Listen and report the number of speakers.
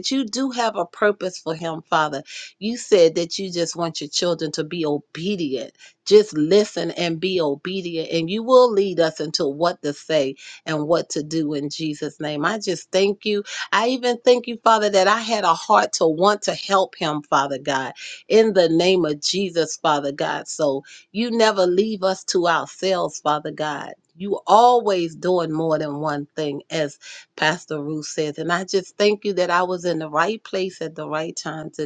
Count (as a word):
one